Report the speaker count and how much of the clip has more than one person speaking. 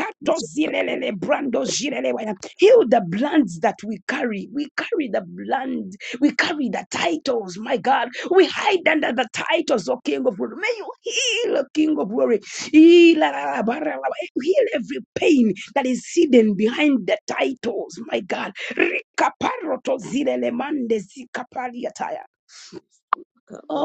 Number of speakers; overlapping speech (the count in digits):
1, no overlap